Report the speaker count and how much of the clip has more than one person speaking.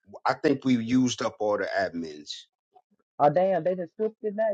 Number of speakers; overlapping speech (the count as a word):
two, no overlap